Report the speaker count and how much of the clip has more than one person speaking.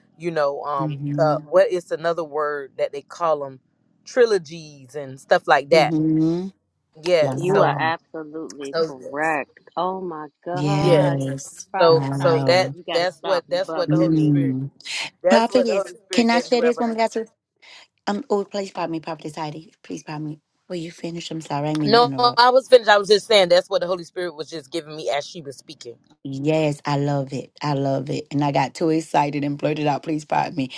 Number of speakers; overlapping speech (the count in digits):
3, about 25%